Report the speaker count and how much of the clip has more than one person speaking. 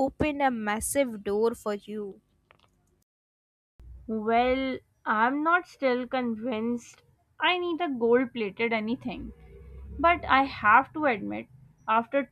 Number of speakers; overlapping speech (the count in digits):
2, no overlap